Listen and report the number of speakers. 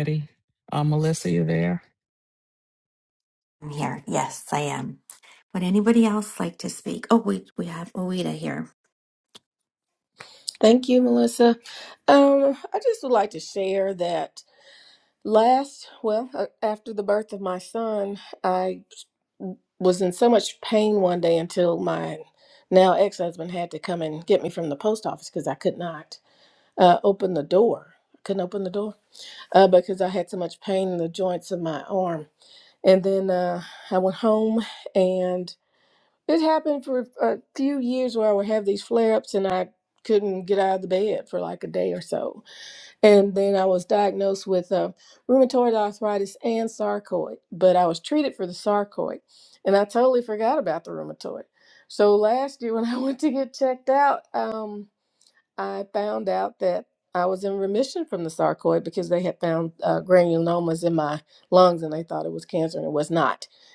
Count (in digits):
3